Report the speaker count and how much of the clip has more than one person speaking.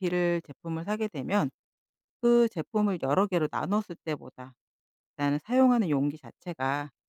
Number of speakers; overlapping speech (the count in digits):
1, no overlap